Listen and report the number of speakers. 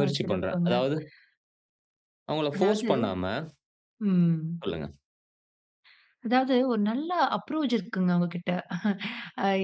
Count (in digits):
2